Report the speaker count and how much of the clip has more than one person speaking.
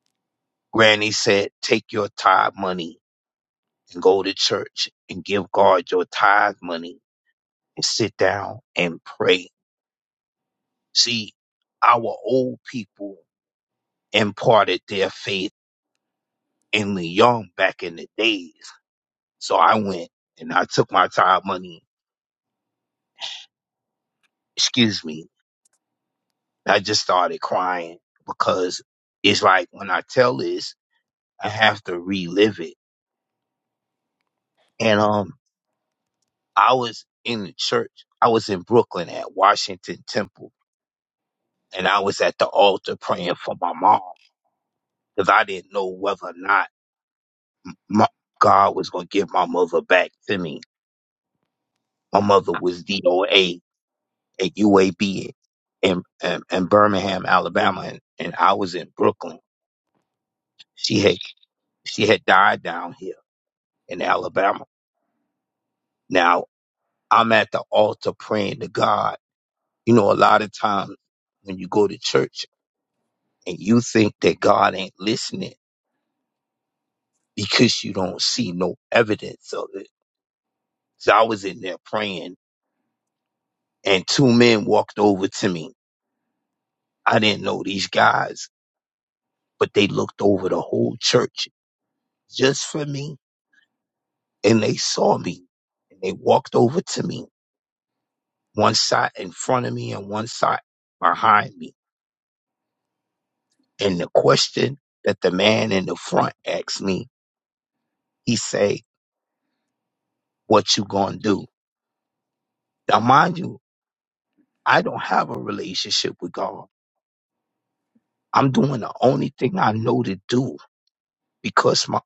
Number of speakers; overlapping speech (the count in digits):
1, no overlap